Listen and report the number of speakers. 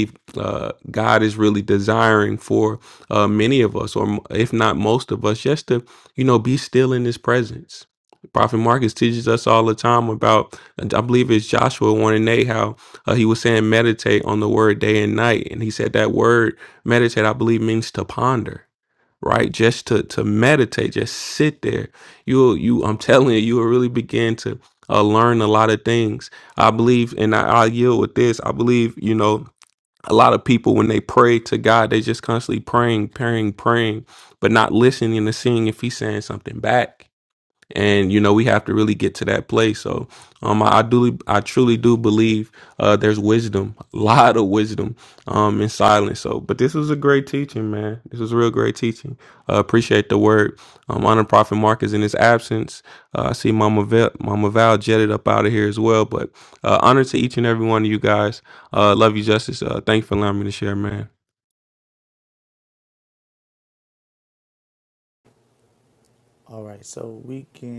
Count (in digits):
2